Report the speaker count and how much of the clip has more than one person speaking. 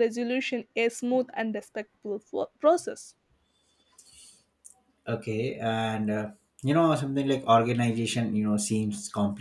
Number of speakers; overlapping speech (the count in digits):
2, no overlap